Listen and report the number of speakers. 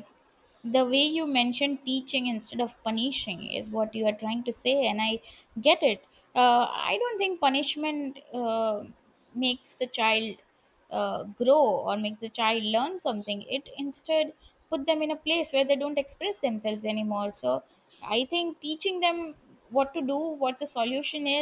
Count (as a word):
one